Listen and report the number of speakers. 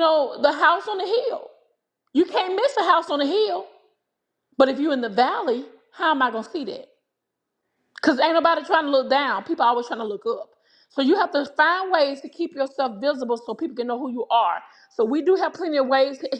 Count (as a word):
one